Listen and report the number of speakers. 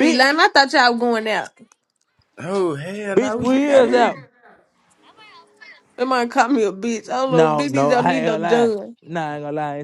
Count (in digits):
3